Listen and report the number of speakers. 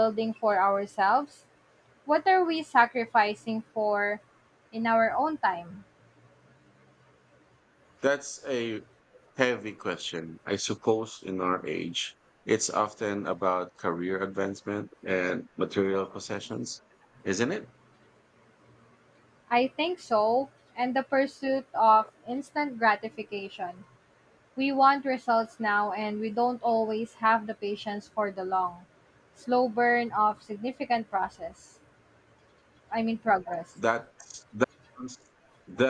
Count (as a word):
two